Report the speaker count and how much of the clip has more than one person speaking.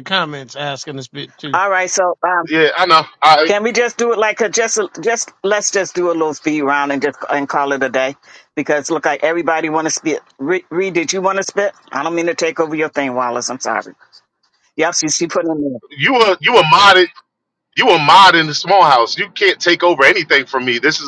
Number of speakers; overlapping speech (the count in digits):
3, about 1%